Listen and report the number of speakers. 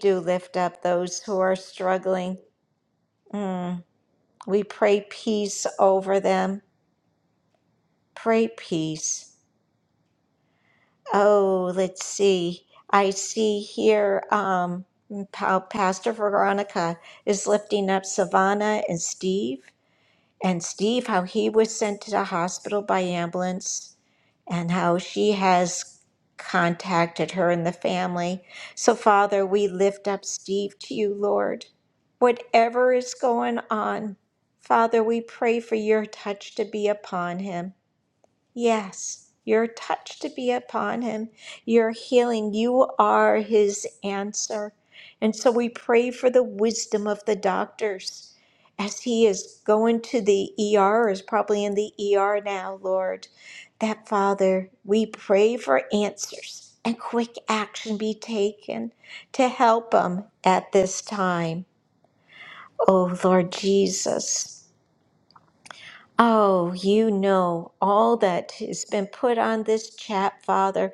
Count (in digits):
1